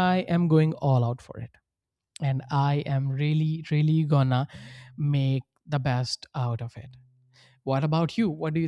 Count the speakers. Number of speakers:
one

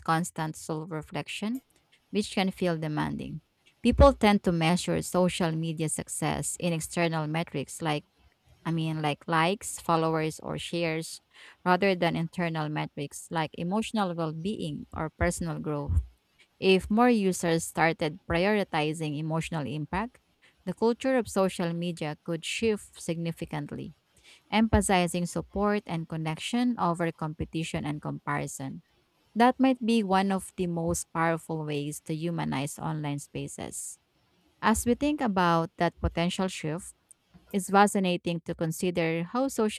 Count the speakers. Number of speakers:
one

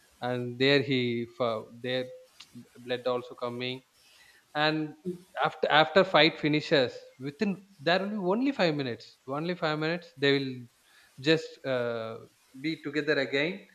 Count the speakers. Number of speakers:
one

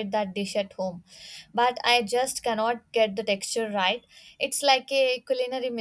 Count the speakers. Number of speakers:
one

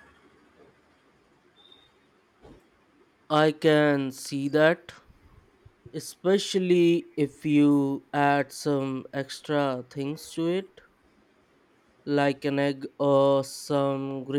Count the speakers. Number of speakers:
one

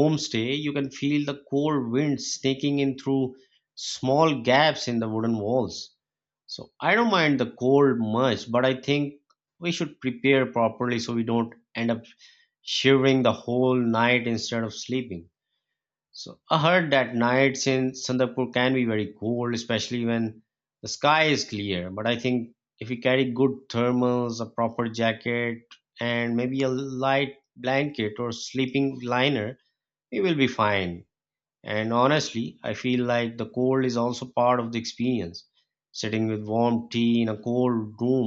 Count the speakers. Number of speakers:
one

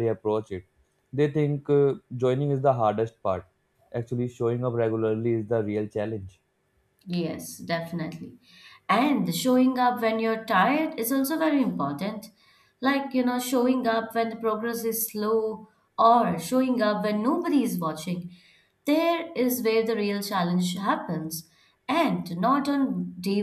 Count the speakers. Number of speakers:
two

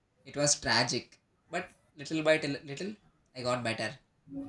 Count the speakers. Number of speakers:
one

